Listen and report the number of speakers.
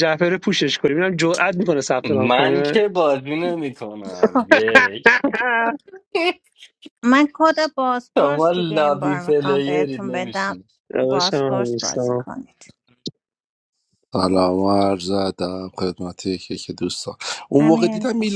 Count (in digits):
4